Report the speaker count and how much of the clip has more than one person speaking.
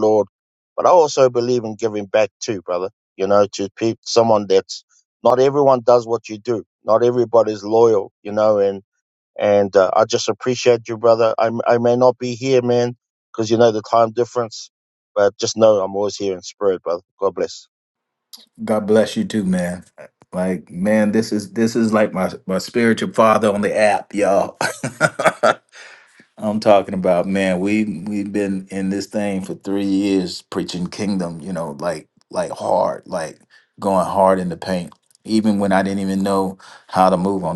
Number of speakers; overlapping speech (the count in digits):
2, no overlap